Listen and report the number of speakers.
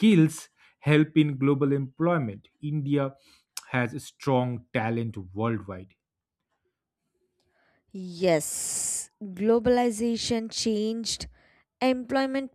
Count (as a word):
two